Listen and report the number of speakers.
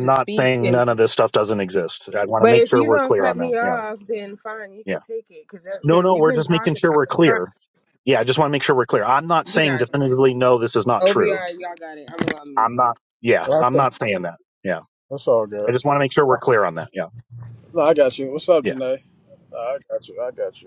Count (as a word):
three